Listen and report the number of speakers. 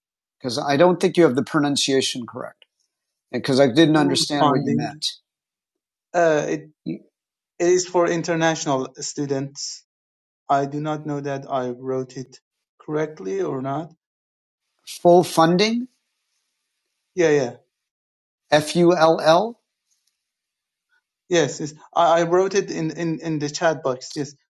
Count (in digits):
2